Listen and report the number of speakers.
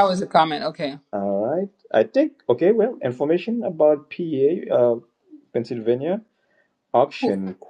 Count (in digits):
2